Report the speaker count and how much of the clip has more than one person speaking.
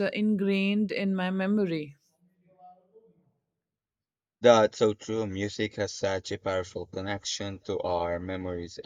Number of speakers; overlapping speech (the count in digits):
2, no overlap